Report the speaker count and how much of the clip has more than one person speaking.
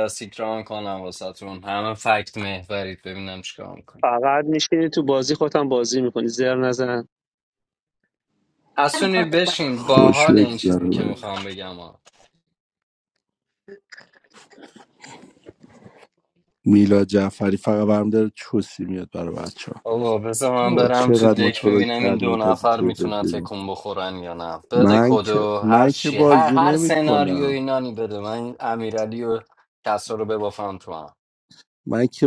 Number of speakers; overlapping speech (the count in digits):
3, about 22%